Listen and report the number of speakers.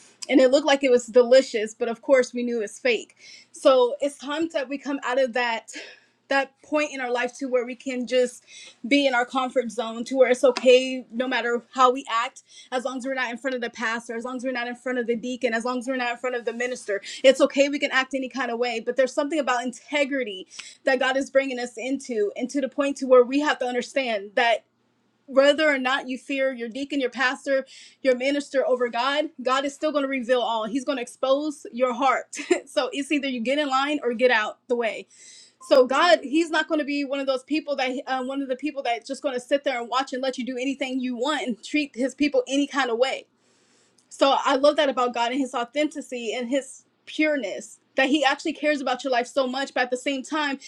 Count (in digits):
1